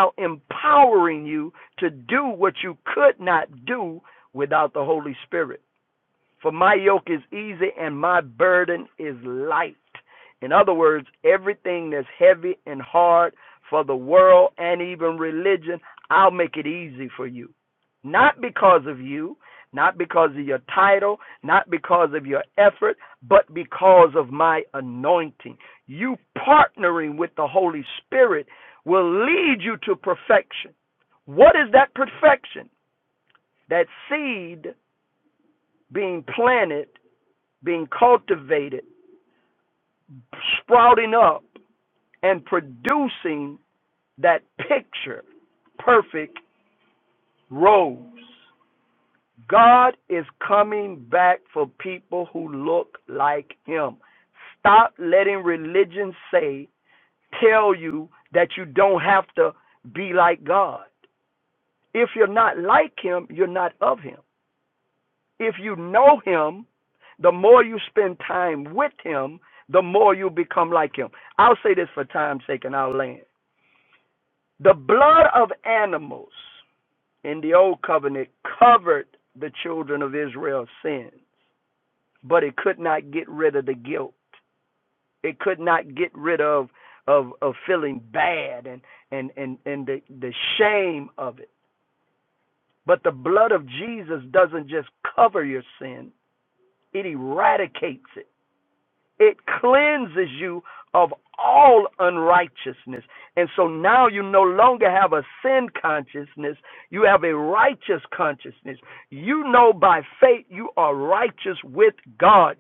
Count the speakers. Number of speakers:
1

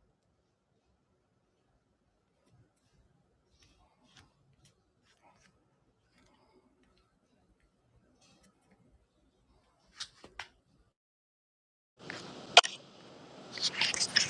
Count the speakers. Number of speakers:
0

